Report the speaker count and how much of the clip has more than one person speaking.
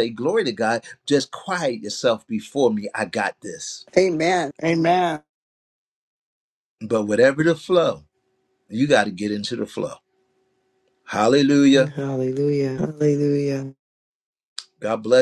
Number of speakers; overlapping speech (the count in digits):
3, no overlap